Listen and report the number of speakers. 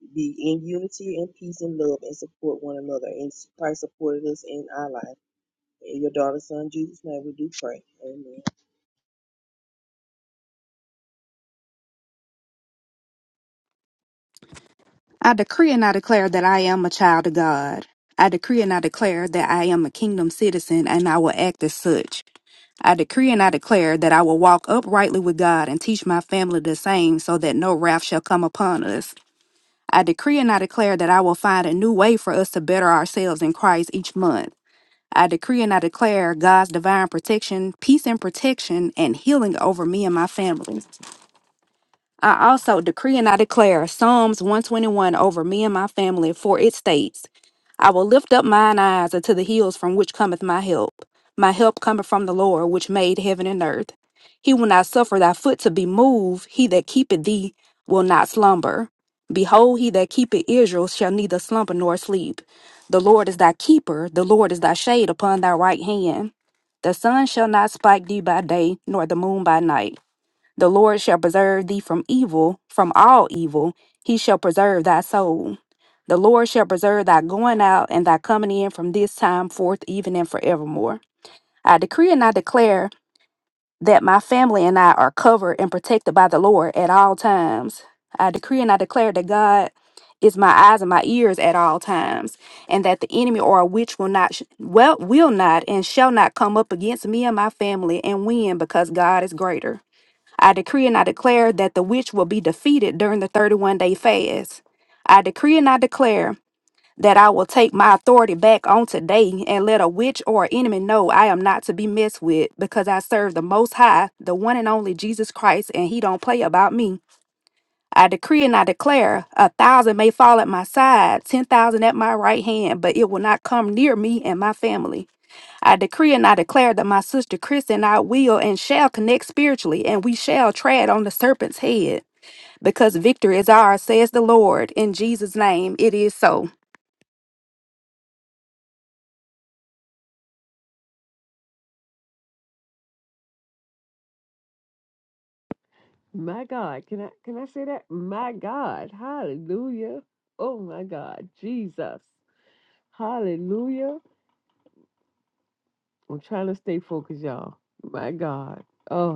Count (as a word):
three